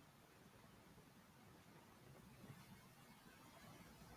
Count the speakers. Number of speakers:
0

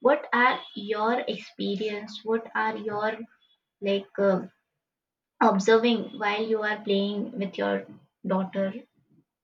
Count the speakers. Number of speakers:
1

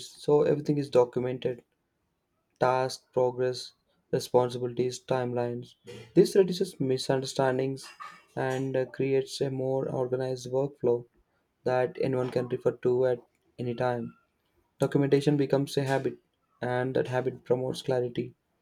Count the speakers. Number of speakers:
1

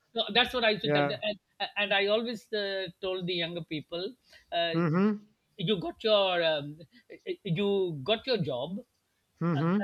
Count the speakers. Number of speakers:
2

